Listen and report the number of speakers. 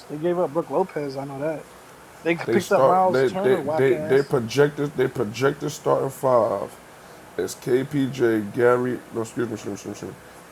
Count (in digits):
2